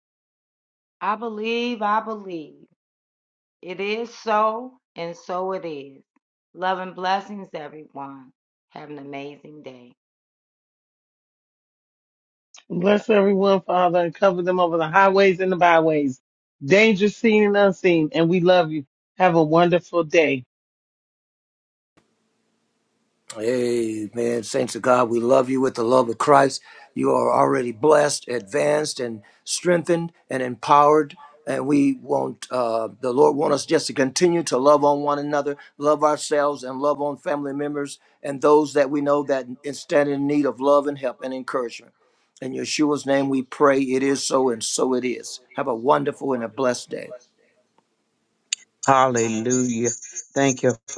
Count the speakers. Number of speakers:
4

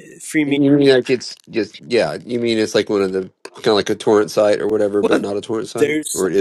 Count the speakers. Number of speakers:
2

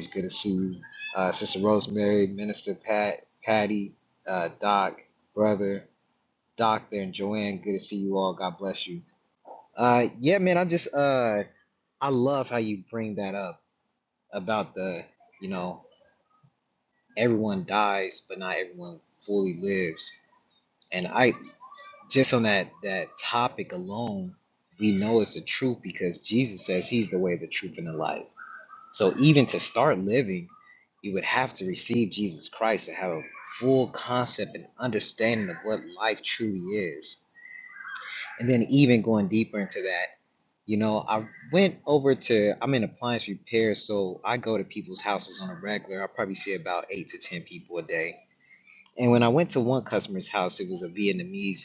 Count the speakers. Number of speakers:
1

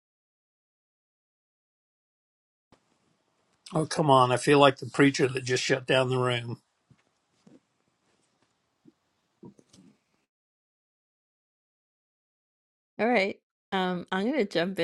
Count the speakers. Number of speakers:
2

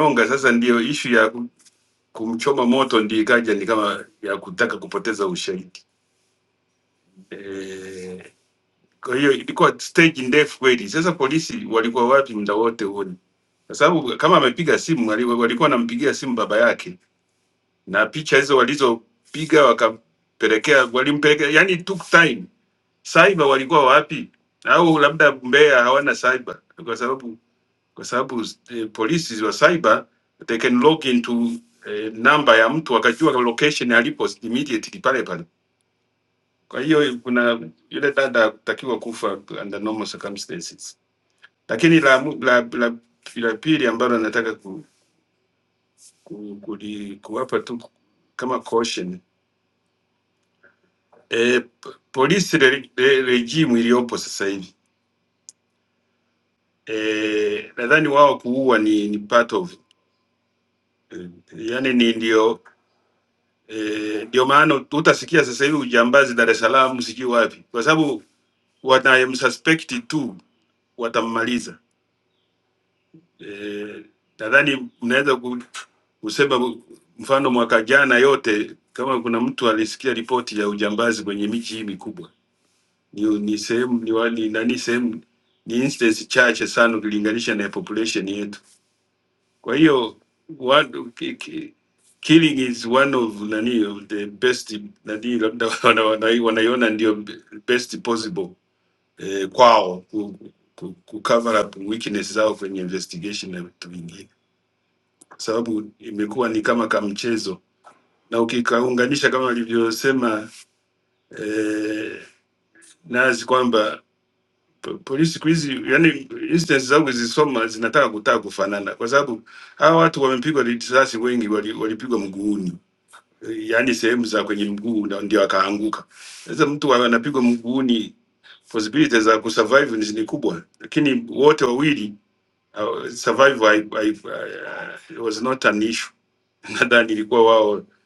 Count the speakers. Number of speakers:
1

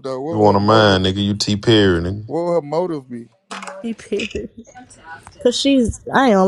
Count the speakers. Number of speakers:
3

